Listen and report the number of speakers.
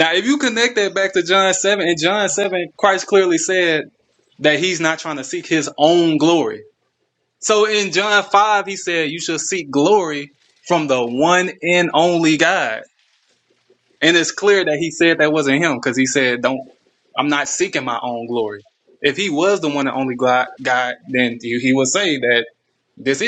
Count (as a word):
one